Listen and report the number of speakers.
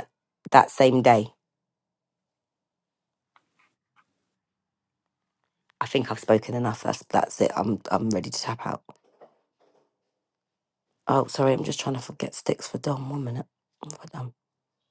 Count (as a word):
one